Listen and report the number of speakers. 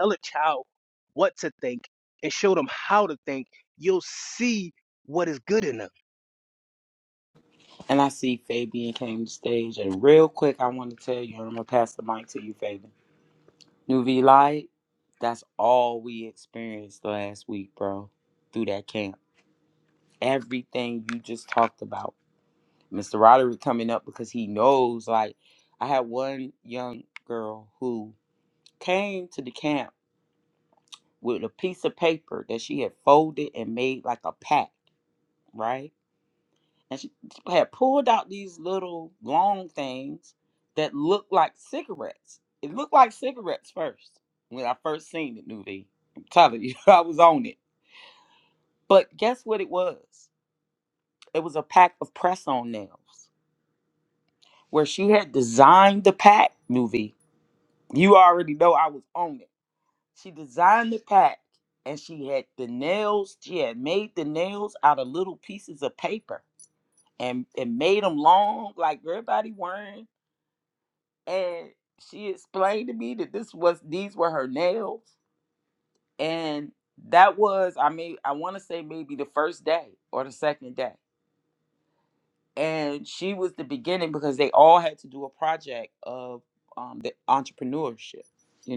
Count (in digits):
2